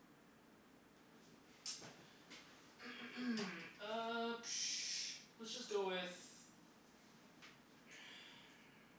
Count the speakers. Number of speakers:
one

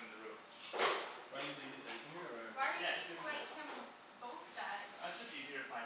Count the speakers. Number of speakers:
three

